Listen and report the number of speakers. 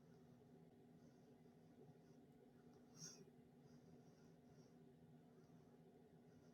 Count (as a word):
zero